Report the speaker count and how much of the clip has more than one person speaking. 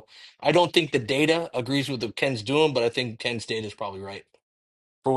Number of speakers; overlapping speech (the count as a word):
one, no overlap